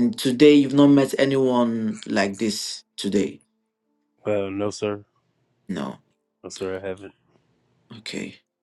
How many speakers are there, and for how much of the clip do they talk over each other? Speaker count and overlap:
2, no overlap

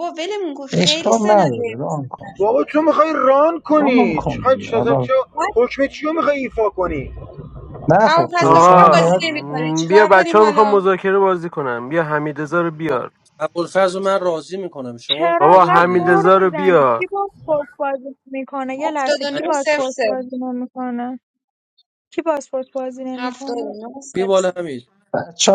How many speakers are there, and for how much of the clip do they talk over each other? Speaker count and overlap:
6, about 36%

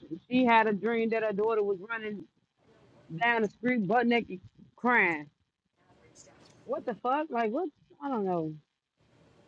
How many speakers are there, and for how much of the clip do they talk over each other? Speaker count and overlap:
1, no overlap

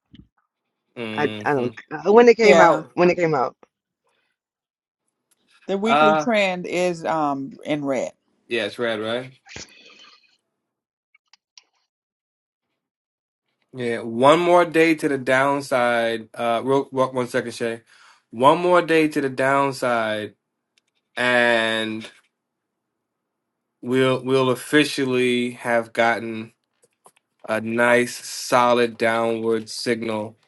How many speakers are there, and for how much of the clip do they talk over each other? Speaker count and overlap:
3, about 5%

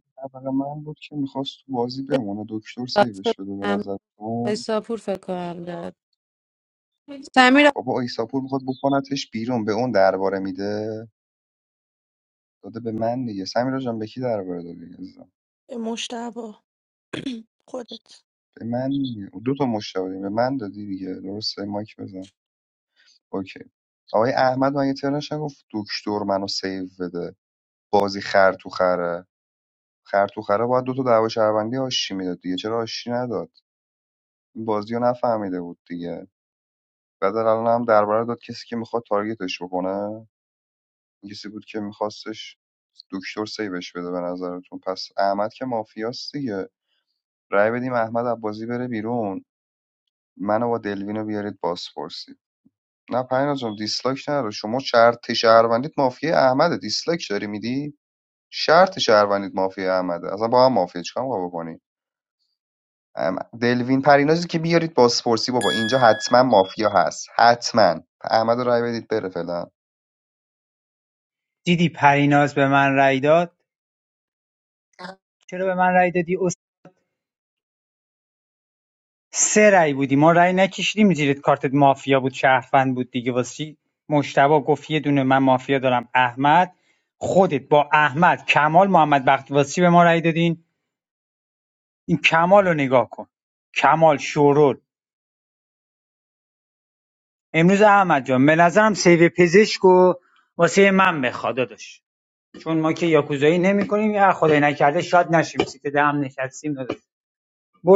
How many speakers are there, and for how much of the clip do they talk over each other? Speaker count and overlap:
4, about 1%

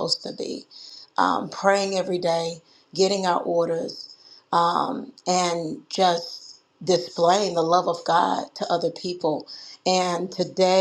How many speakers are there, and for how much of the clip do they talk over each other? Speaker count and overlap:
1, no overlap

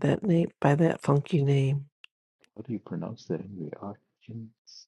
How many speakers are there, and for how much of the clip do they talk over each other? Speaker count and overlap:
2, no overlap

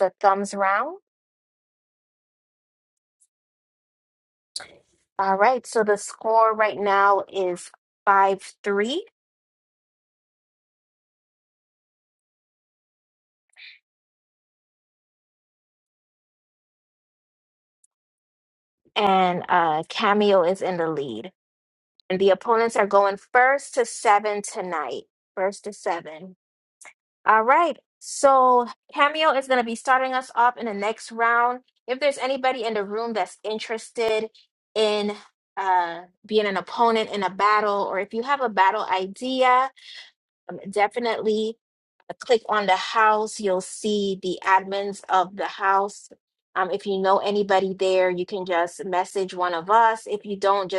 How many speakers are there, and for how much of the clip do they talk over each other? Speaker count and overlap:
1, no overlap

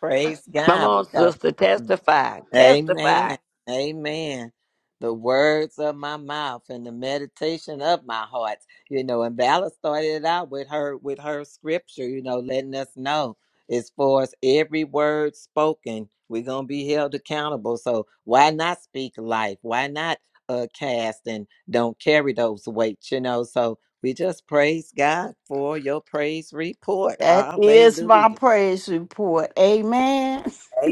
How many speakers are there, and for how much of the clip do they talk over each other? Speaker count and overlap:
3, about 9%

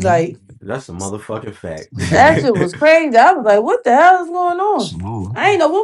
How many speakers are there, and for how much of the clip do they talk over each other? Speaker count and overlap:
3, about 8%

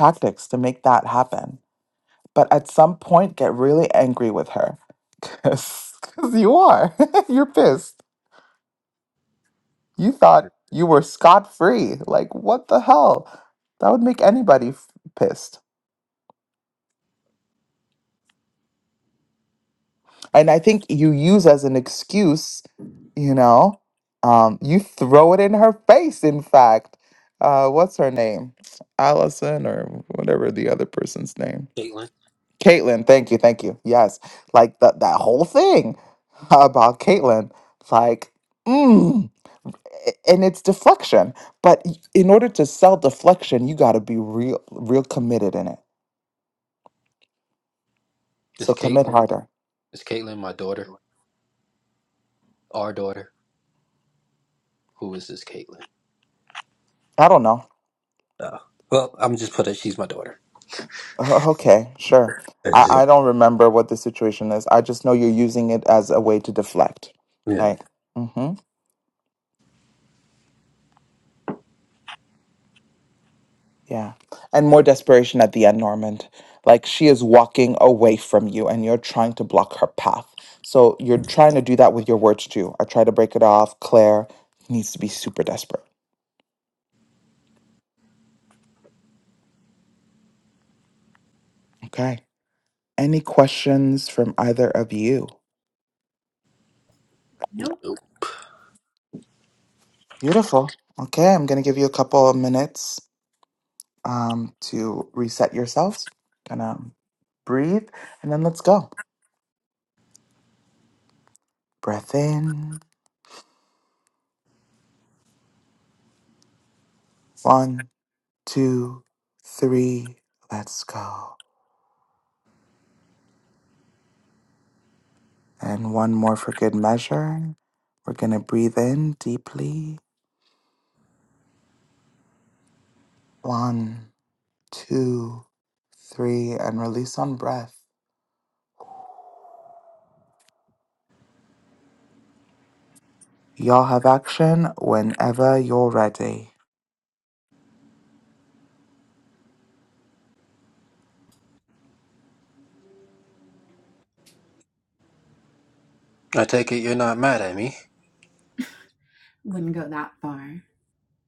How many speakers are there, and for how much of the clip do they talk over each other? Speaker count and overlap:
3, about 1%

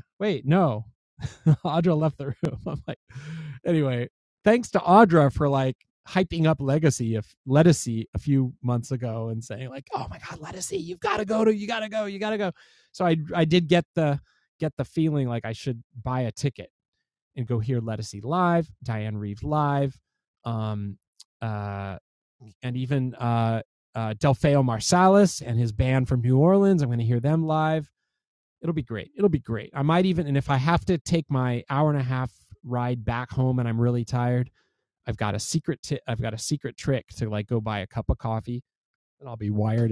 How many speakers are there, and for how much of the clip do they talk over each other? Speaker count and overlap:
1, no overlap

